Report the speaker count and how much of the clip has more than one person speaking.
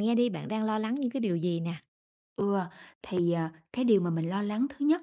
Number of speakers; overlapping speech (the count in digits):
2, no overlap